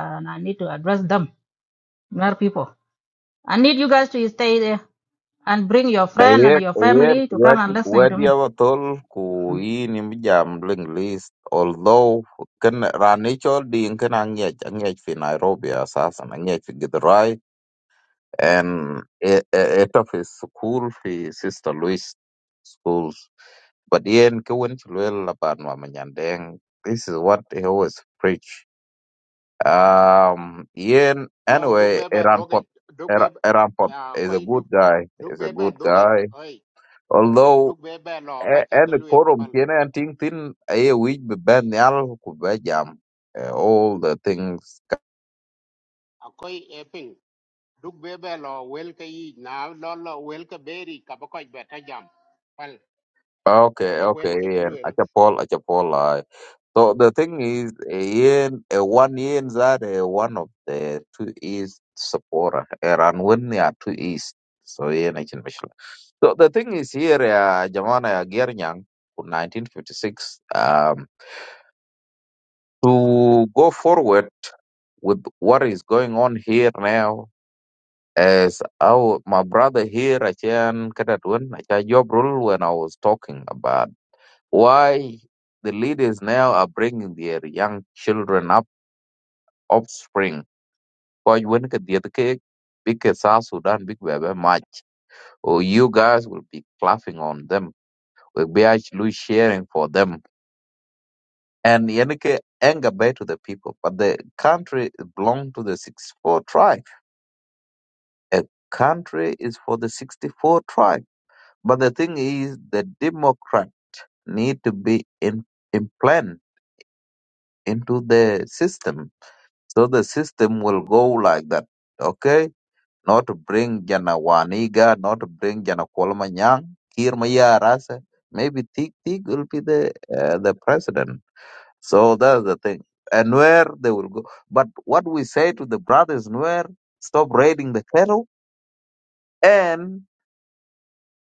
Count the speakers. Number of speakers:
3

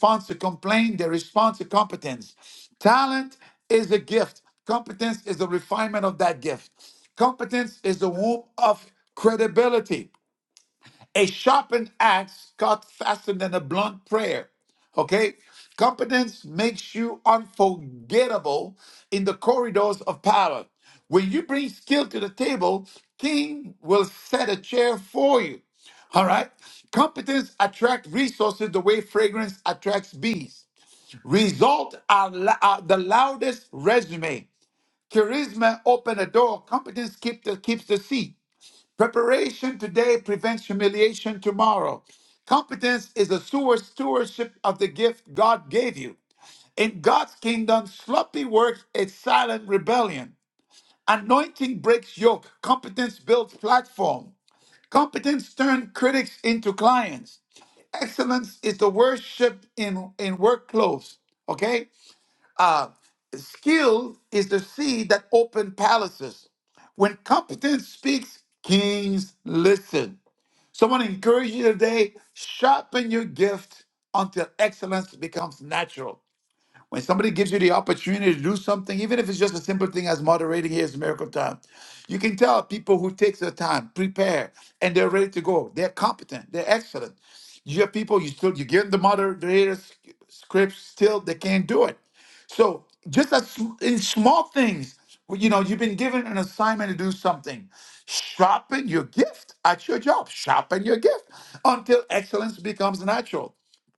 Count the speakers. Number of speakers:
1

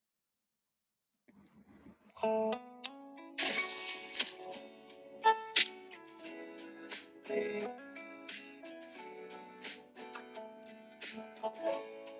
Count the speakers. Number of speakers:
0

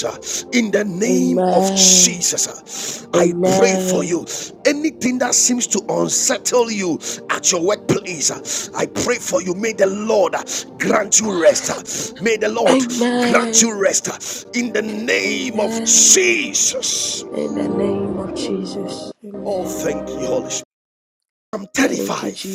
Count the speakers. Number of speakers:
2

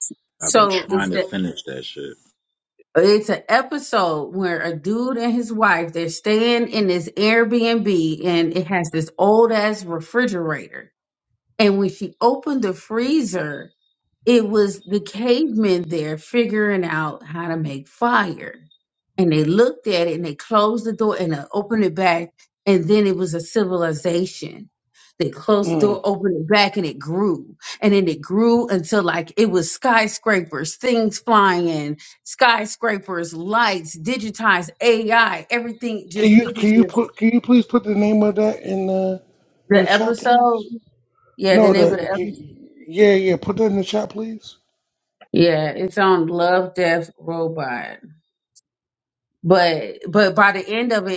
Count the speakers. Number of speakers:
3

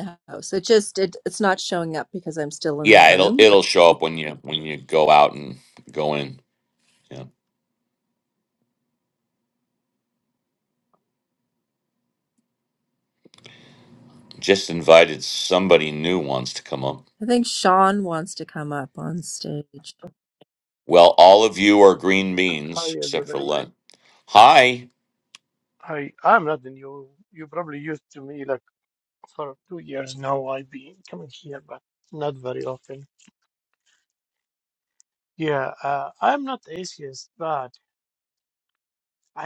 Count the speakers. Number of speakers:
3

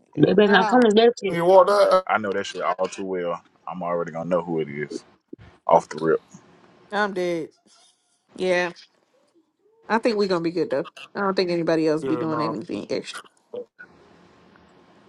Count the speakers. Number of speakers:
4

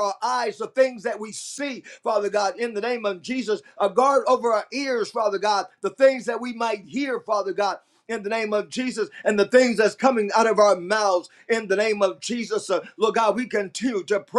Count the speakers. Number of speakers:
1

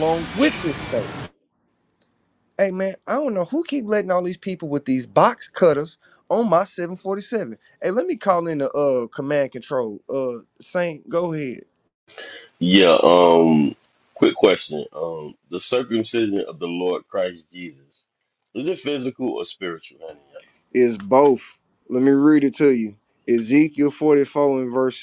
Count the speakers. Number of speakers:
2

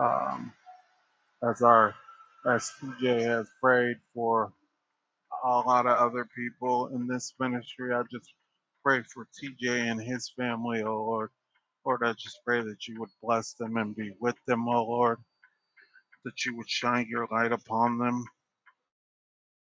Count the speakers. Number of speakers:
1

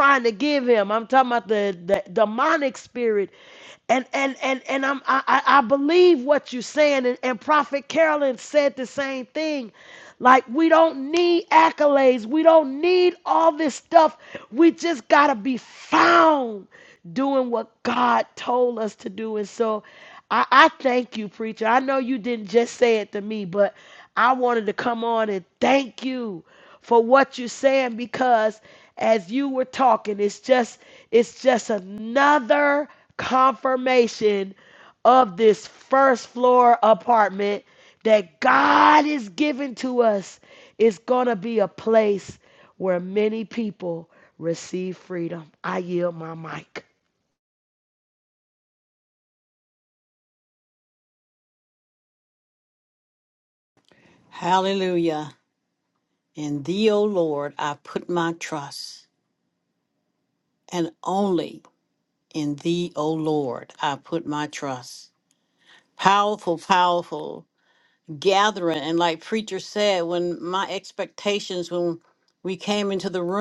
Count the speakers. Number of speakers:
2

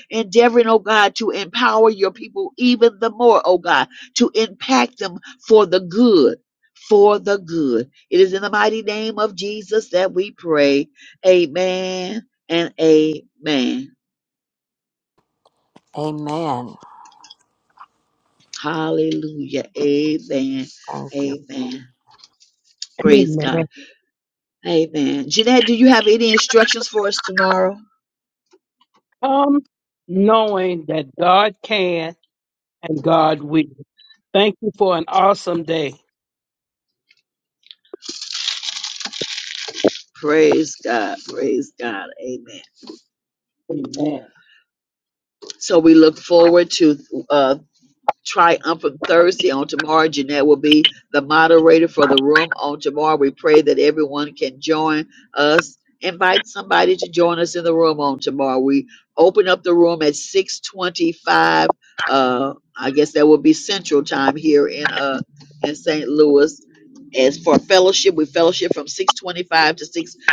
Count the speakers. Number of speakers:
3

